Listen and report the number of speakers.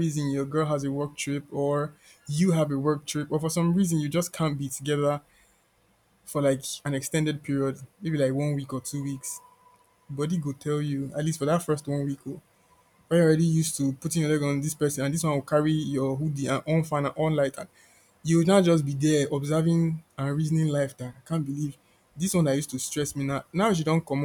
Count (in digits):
1